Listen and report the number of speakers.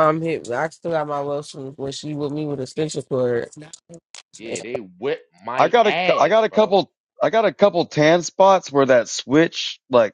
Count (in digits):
3